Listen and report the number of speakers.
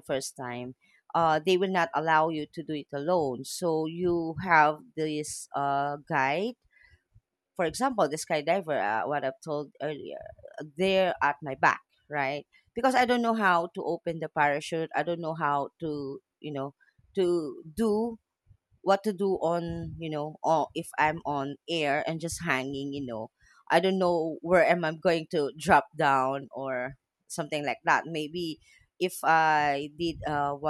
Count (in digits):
1